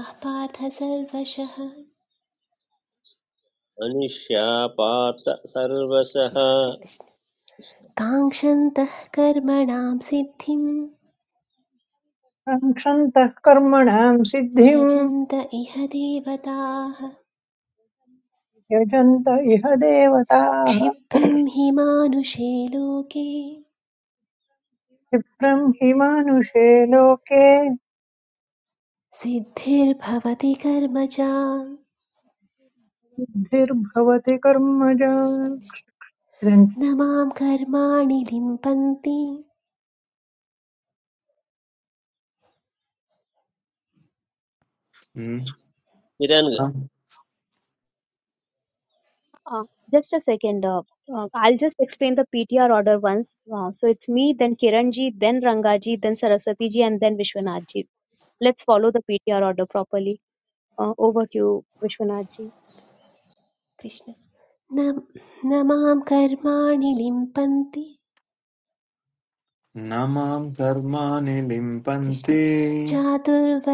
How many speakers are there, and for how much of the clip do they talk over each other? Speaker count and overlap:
5, about 1%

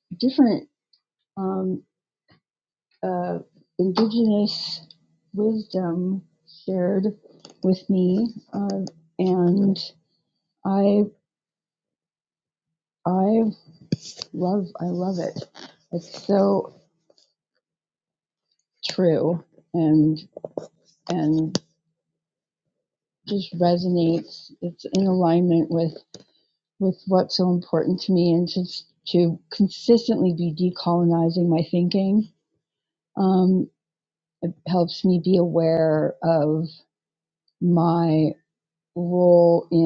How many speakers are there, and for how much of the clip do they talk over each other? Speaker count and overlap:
1, no overlap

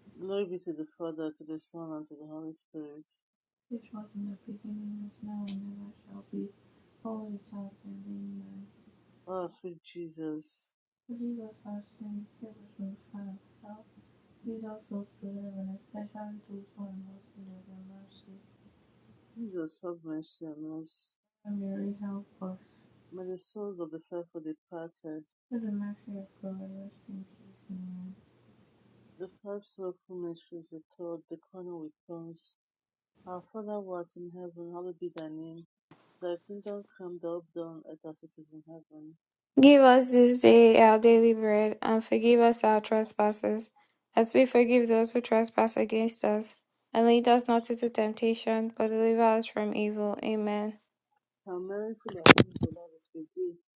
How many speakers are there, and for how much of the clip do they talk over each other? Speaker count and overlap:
3, no overlap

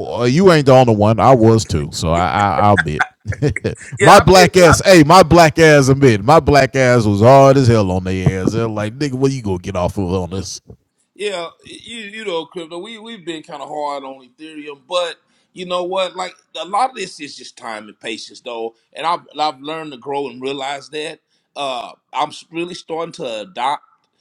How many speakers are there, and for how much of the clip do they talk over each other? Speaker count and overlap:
2, about 2%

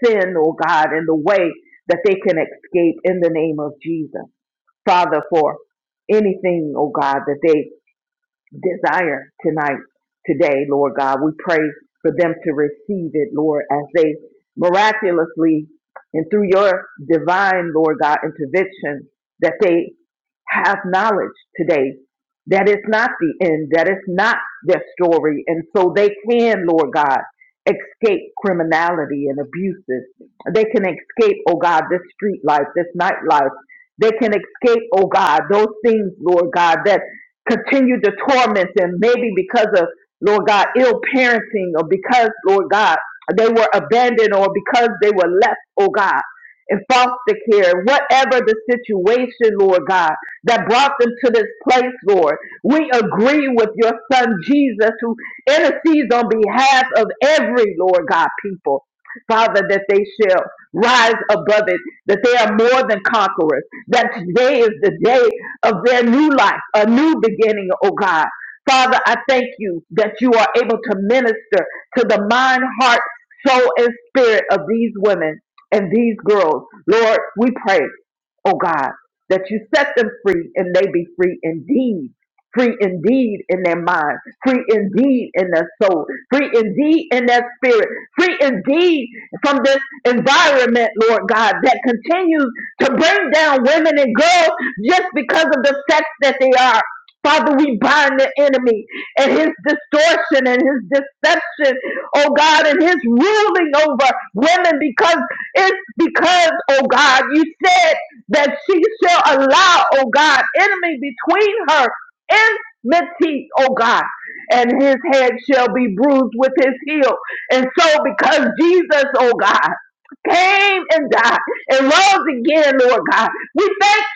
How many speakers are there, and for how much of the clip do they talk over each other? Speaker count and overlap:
1, no overlap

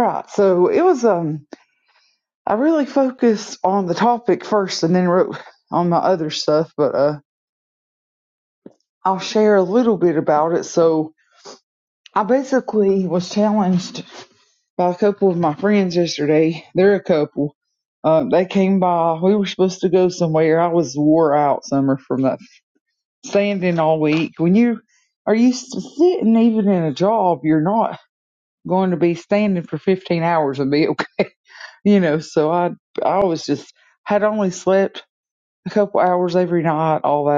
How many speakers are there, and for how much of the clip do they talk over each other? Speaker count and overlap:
1, no overlap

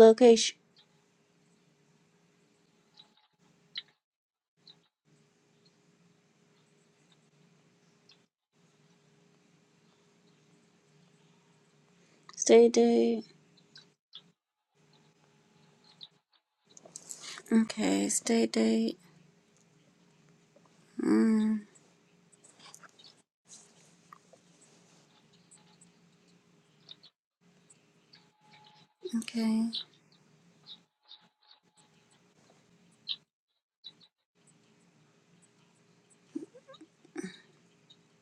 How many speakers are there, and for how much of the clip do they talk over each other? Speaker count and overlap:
1, no overlap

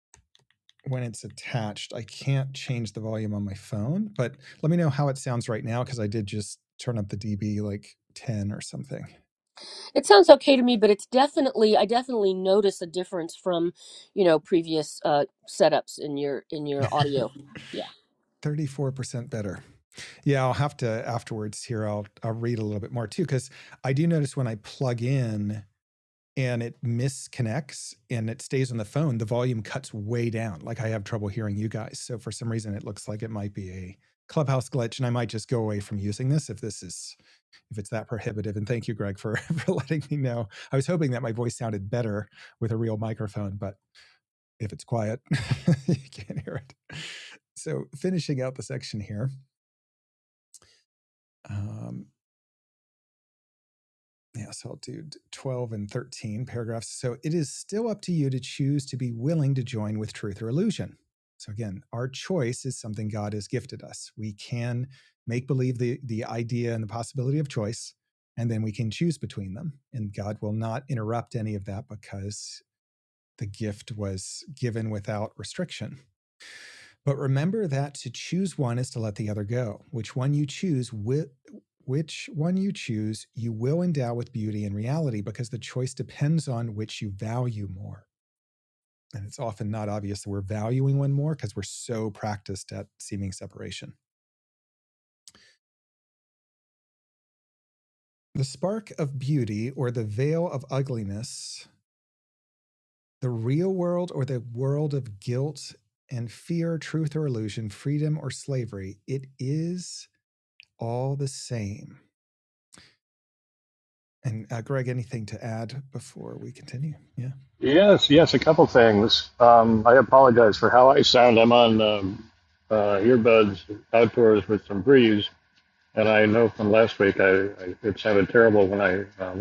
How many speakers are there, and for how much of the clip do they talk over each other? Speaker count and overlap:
3, no overlap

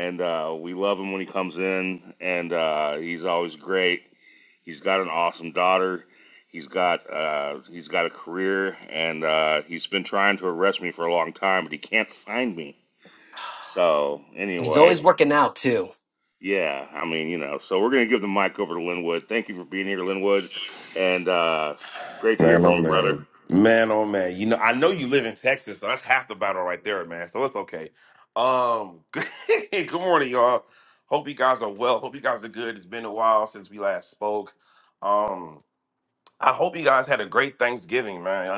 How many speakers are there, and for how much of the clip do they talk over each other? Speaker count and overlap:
3, about 3%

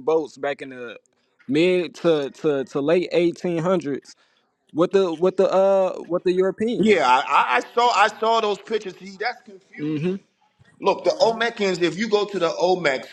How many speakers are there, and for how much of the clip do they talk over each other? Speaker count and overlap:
2, about 3%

